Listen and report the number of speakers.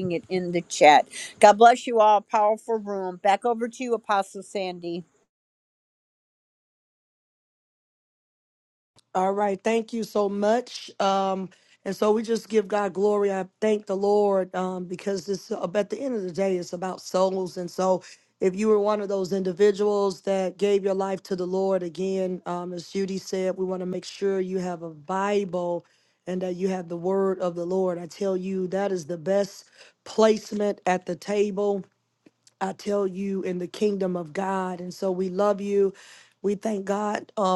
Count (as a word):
two